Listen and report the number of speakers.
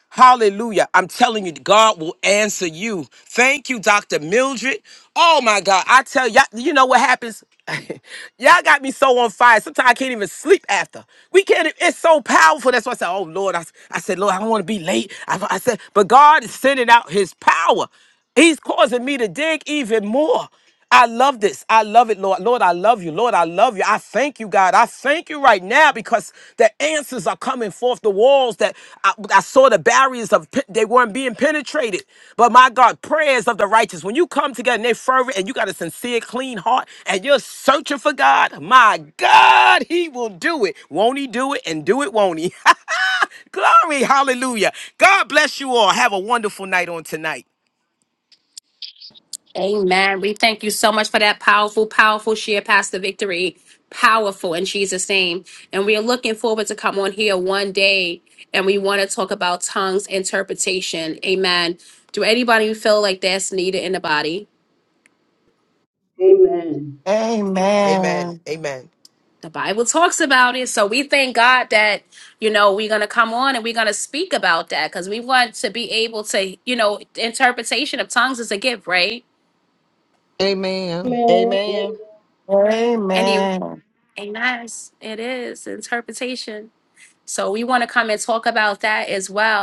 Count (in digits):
5